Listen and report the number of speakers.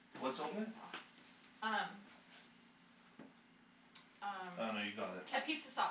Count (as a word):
two